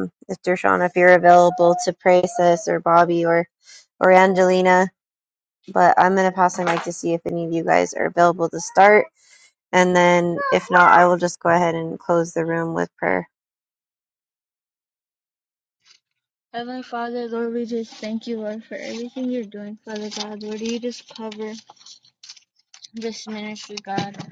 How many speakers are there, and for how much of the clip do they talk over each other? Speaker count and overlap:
2, no overlap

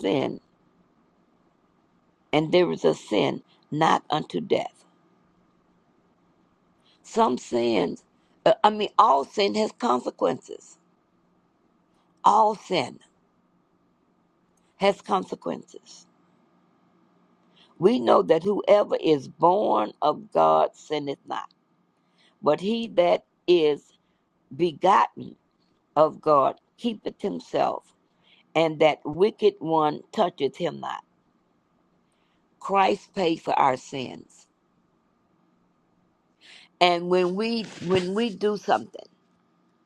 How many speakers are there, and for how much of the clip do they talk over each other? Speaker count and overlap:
1, no overlap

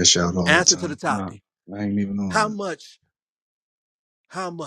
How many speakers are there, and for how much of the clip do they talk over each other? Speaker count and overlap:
2, about 21%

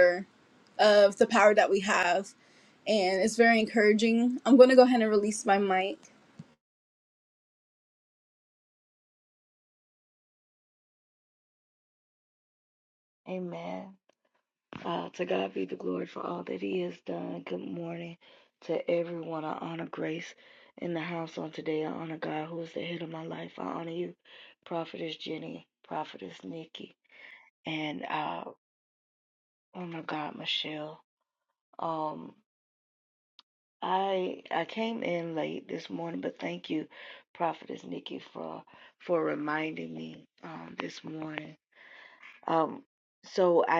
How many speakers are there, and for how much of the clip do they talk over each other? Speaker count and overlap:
2, no overlap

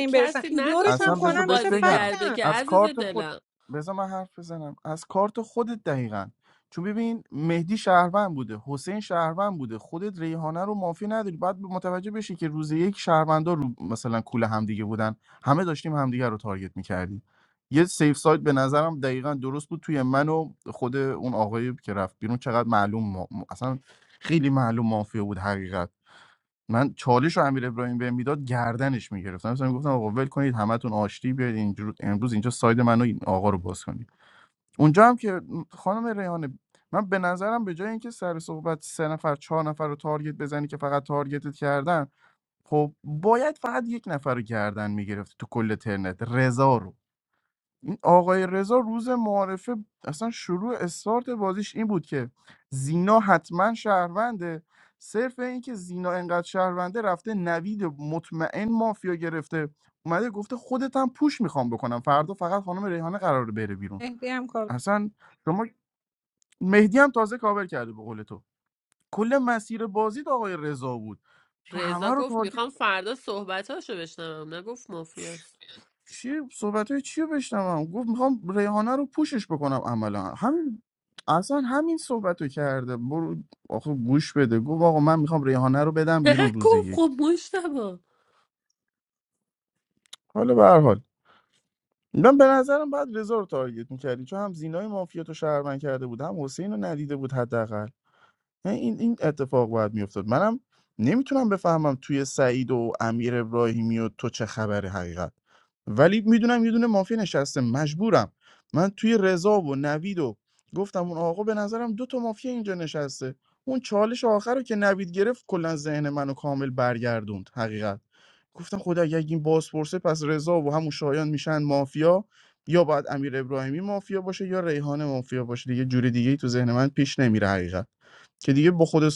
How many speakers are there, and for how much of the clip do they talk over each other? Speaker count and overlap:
3, about 4%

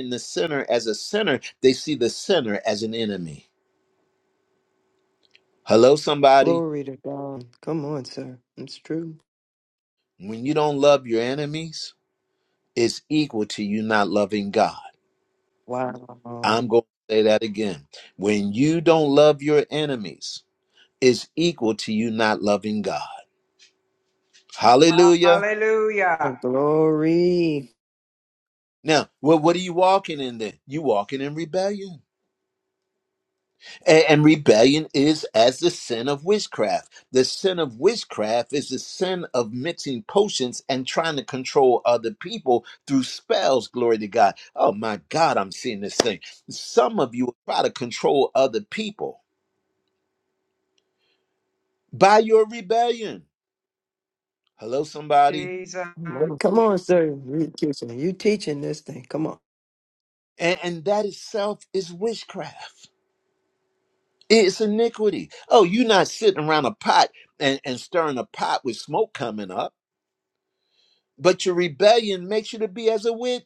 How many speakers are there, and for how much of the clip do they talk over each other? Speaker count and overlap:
3, about 1%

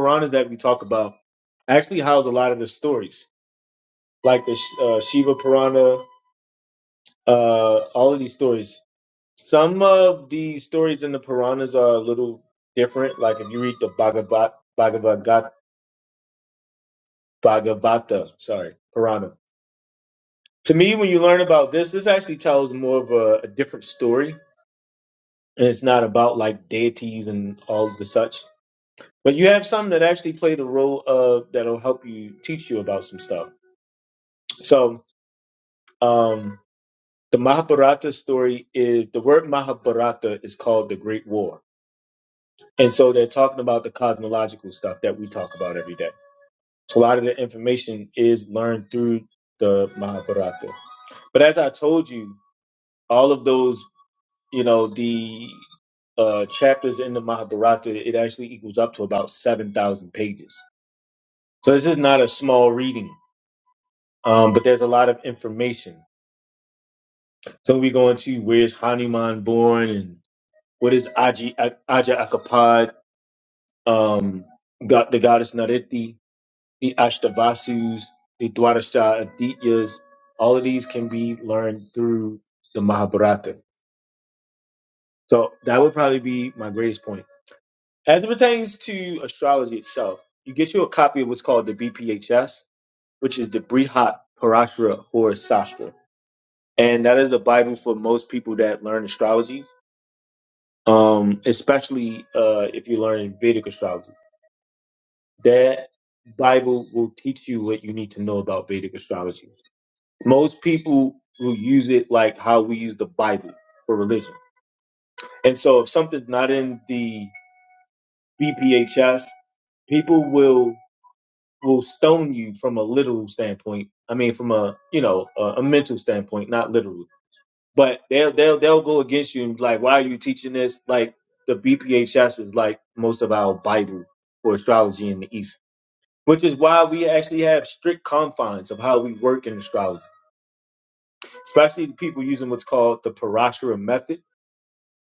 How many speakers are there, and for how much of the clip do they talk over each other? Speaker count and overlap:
1, no overlap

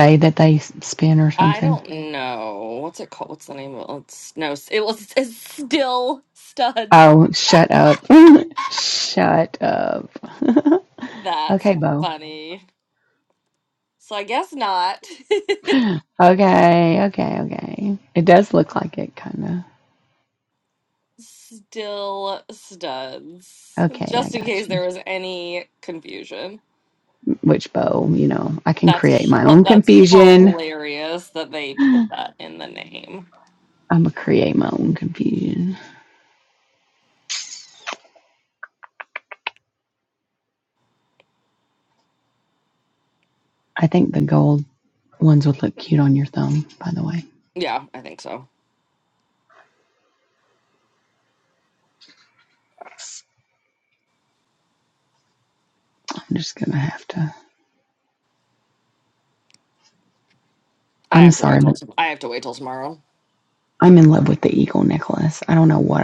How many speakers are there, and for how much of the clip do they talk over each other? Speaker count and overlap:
2, about 6%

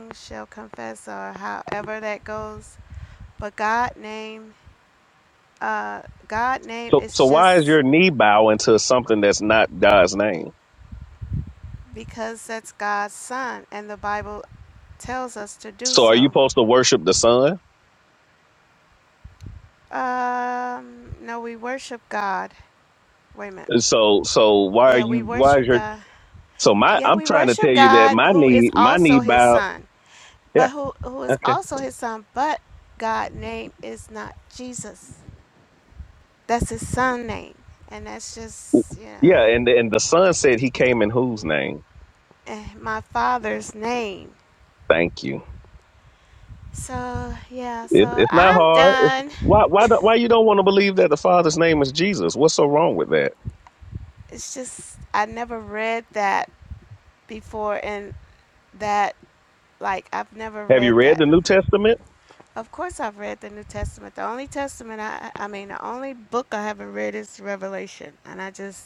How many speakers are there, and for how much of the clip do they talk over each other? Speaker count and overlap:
2, about 11%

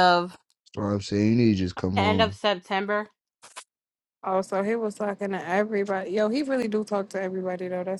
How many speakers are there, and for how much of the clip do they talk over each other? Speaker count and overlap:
3, about 7%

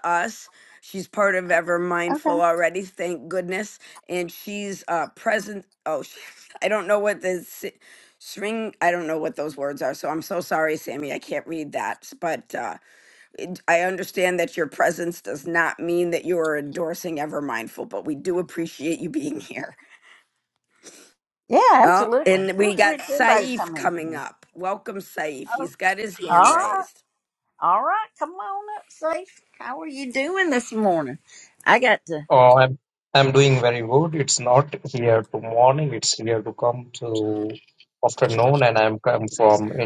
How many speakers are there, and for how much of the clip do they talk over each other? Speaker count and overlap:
3, about 8%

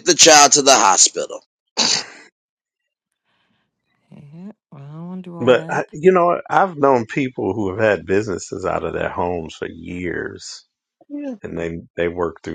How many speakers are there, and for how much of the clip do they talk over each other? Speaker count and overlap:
3, about 3%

